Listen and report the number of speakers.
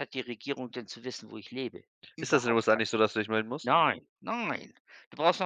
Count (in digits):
2